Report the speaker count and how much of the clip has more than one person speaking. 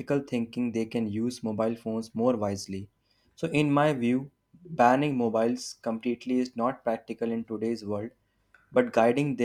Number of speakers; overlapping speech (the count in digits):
1, no overlap